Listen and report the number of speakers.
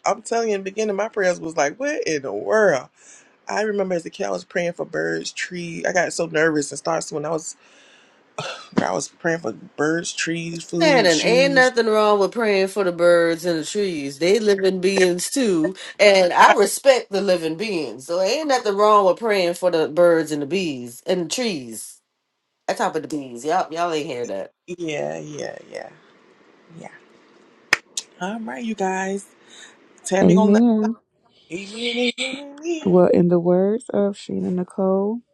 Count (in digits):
3